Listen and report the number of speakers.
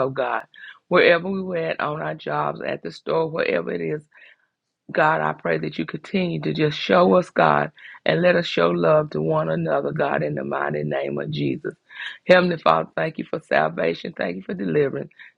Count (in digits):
1